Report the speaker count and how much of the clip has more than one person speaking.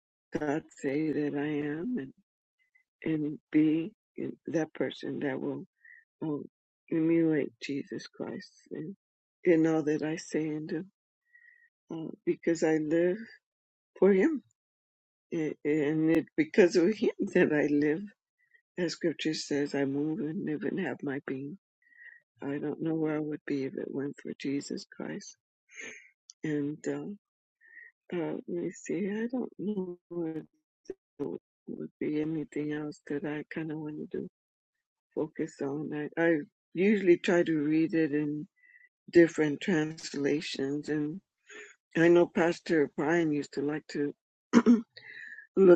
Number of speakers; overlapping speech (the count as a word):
one, no overlap